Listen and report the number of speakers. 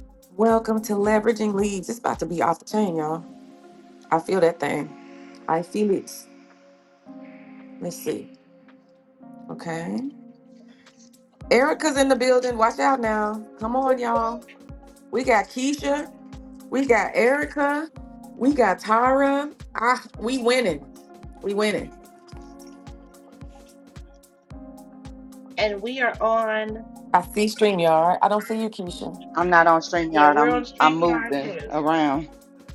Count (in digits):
3